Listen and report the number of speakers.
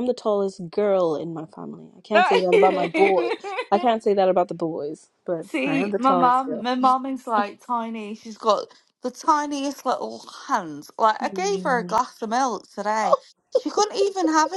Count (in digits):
2